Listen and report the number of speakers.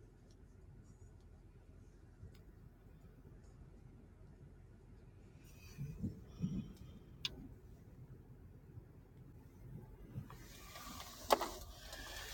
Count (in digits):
0